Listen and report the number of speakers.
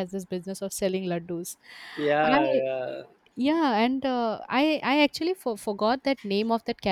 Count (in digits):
2